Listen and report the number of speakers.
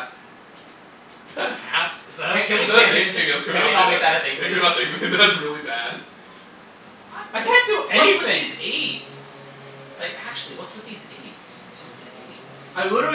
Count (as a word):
four